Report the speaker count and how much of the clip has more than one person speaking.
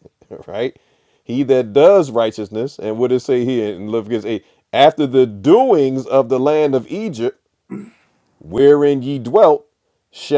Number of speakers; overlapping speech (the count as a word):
one, no overlap